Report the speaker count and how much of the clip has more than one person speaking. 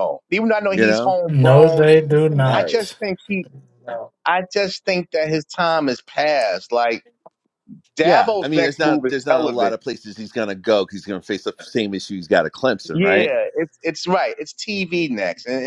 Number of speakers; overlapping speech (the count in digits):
3, about 22%